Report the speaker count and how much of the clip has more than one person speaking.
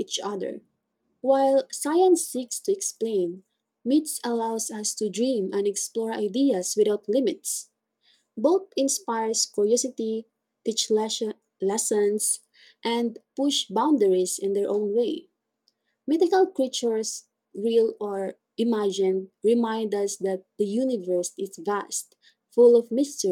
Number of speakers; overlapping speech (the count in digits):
1, no overlap